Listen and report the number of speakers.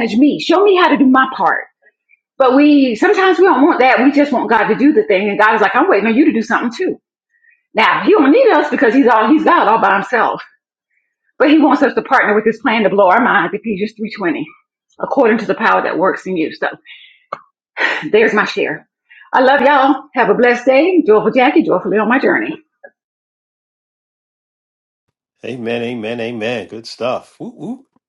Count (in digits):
2